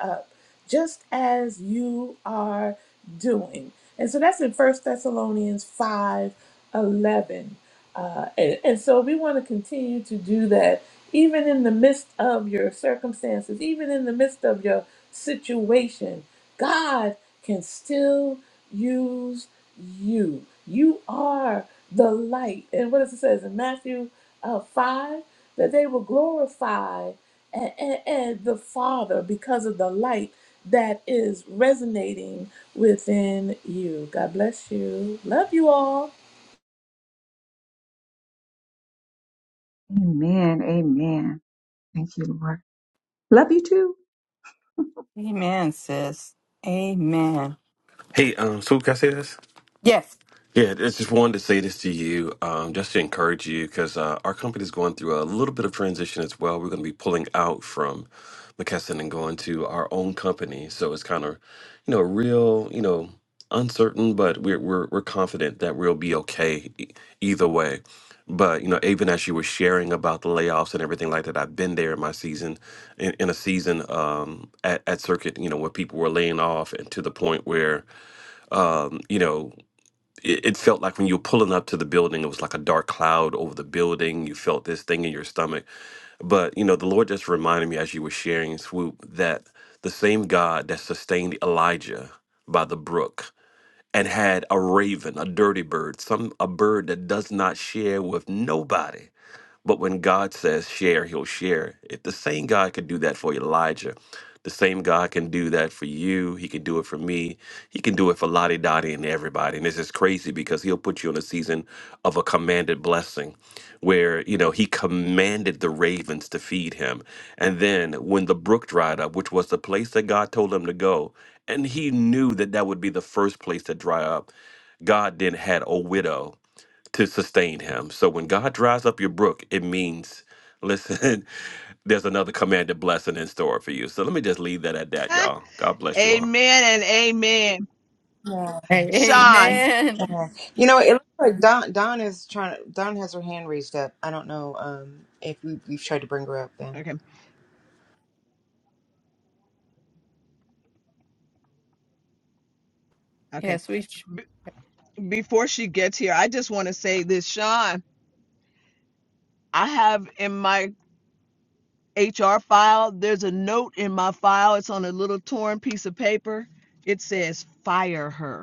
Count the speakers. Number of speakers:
6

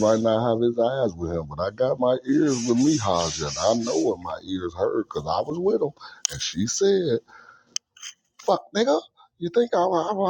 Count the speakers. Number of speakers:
1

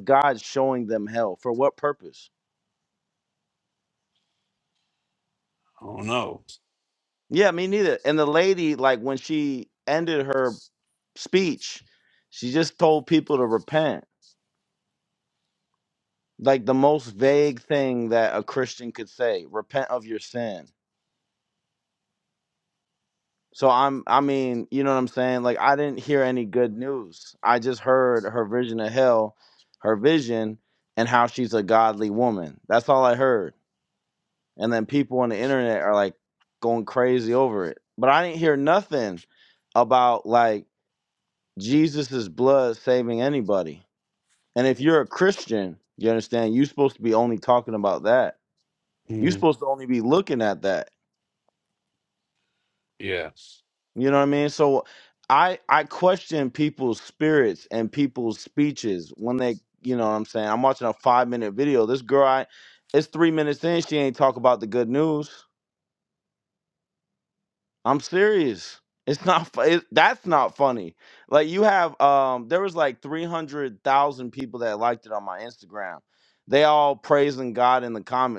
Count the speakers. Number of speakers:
2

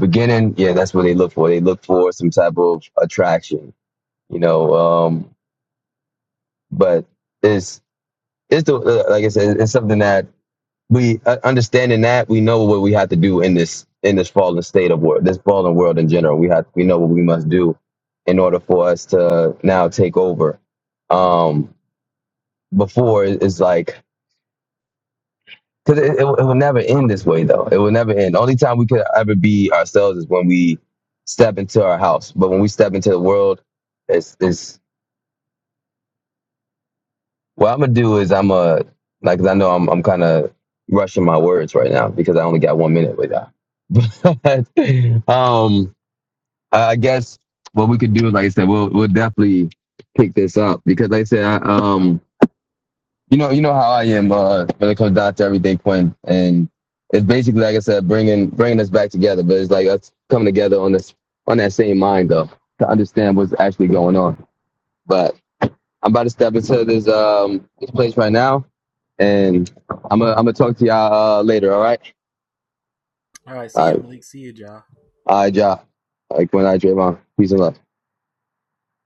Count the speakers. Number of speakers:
2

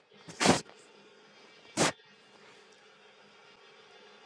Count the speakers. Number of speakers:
0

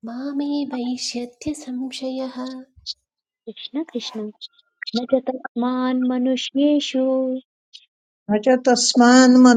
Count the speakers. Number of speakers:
3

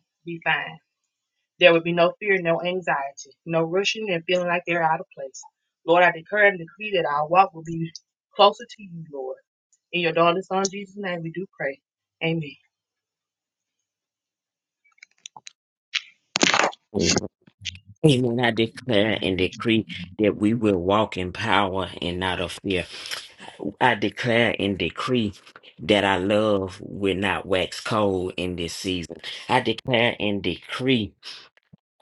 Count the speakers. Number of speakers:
2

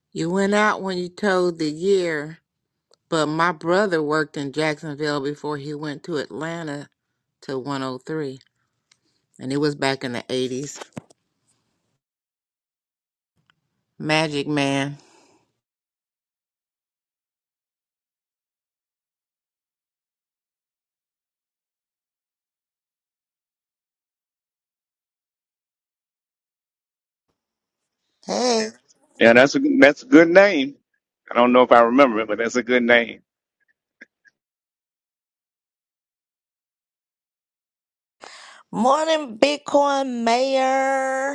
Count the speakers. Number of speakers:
3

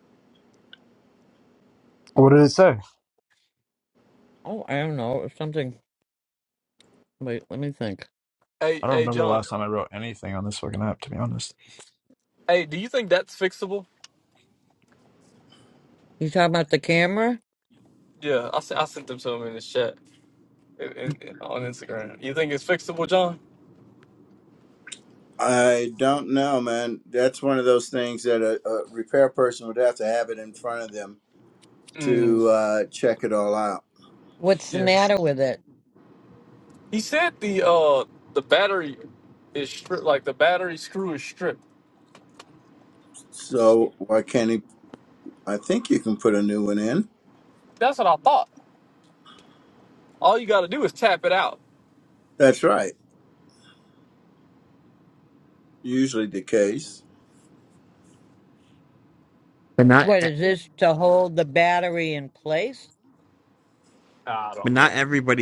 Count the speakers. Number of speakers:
5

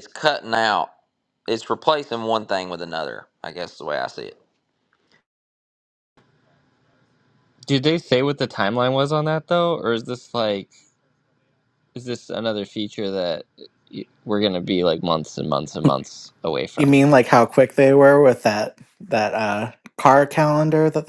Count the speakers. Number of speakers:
3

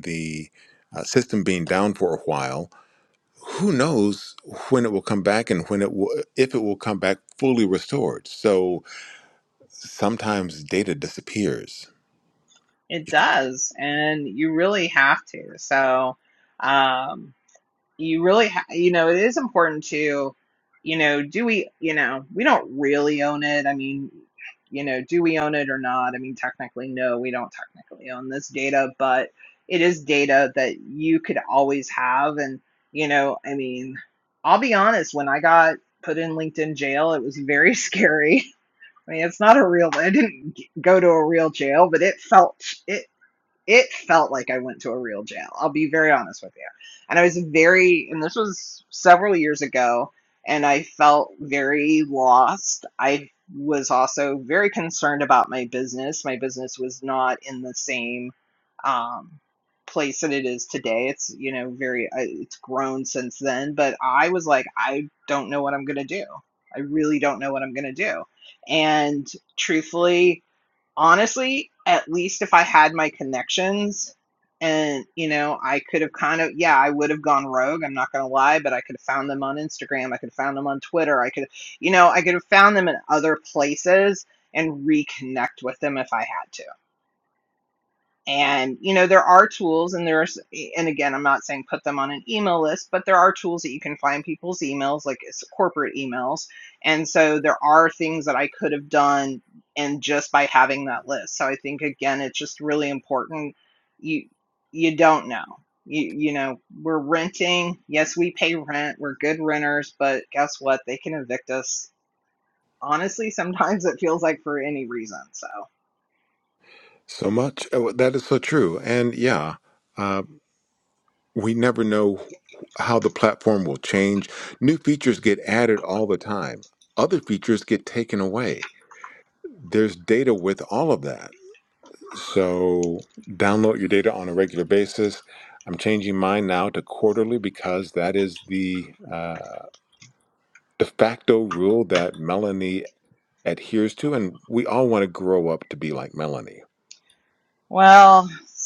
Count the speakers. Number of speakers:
2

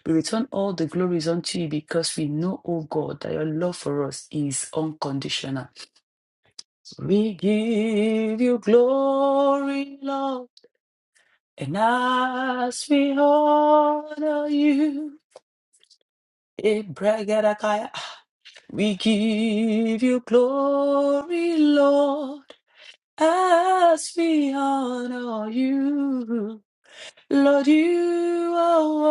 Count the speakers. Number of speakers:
1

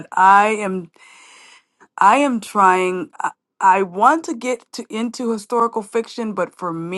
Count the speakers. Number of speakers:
1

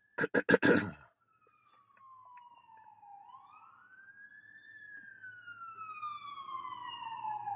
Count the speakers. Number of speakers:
0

